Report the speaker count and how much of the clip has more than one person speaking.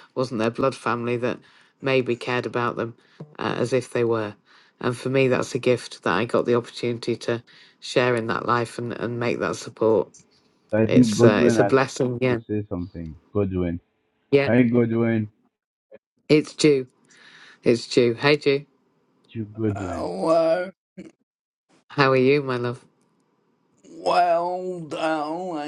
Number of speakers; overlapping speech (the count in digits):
3, about 5%